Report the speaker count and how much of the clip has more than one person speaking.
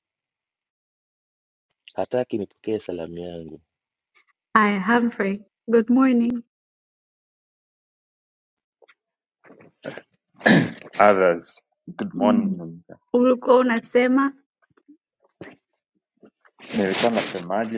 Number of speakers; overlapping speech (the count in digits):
3, about 2%